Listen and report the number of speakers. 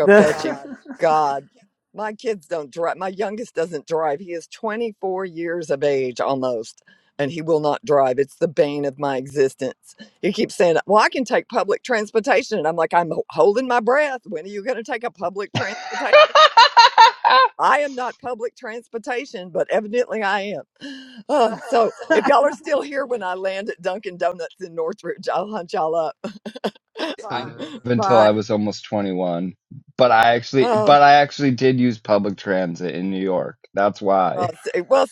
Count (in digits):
3